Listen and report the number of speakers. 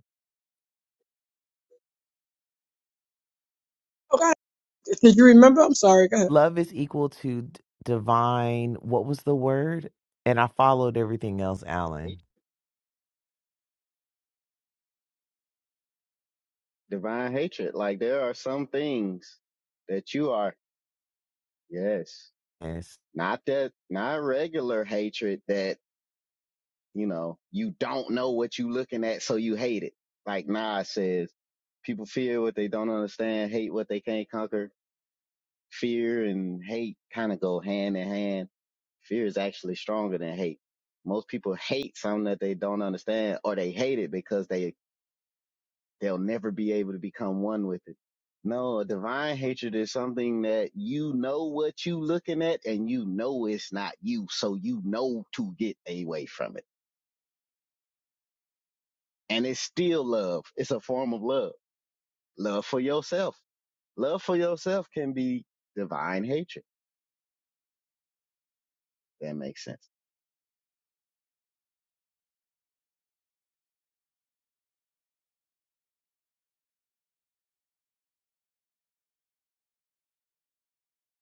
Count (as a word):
three